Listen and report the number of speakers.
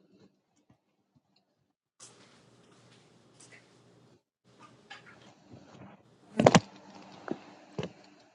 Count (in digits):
0